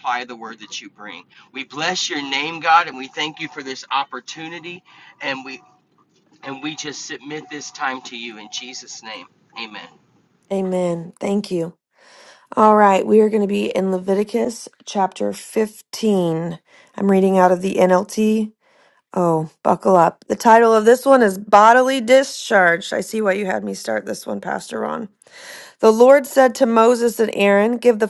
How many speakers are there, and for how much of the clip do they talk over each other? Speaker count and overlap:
2, no overlap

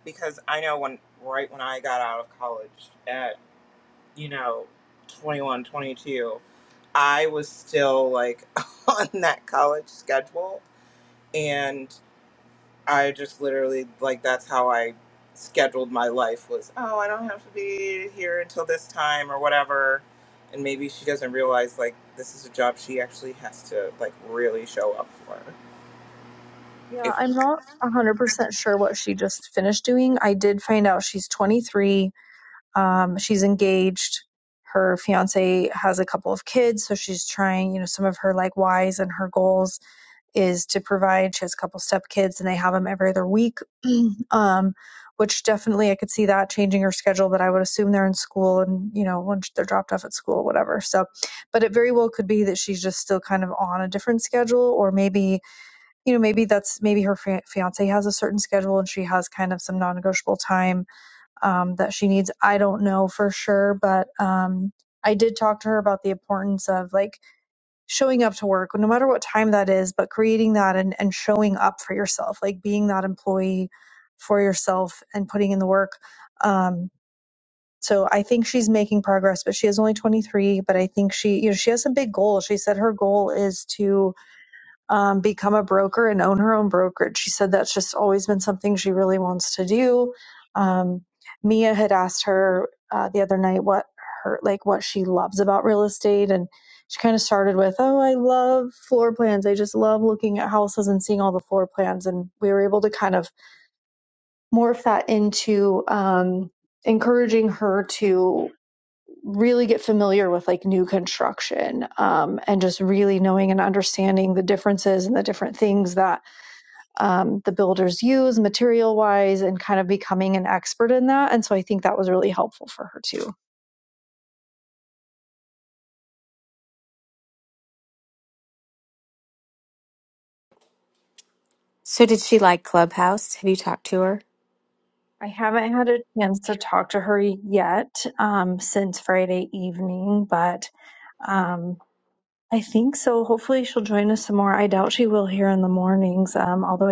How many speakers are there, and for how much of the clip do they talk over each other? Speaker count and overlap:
3, under 1%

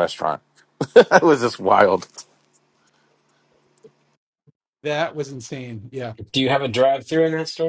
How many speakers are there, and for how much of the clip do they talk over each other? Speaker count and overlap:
3, no overlap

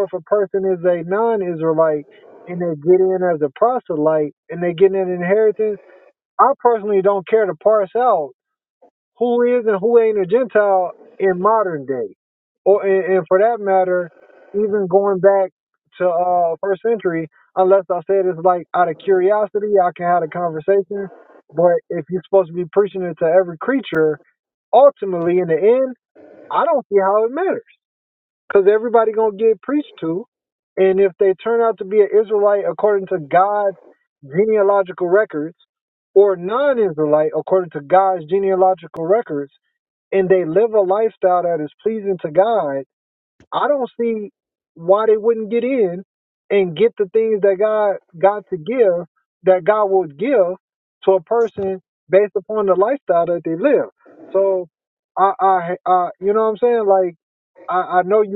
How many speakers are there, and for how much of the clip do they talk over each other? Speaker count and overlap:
1, no overlap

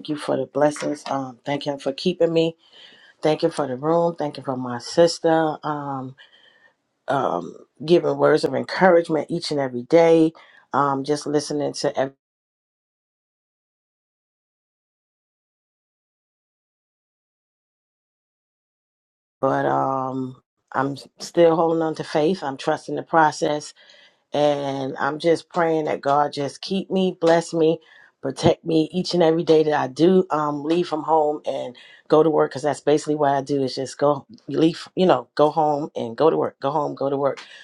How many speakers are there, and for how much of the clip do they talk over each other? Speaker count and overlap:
1, no overlap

